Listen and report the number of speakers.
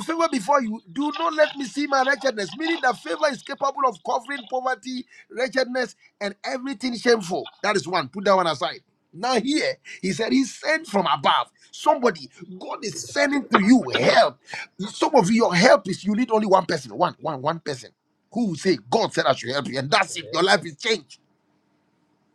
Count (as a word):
one